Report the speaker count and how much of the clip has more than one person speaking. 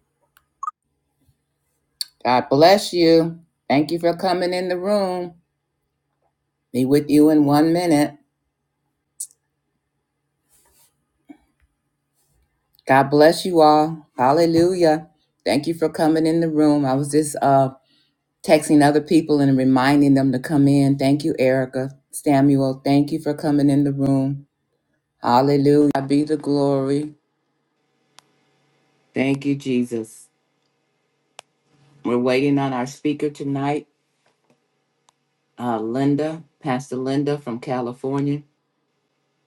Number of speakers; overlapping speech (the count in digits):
1, no overlap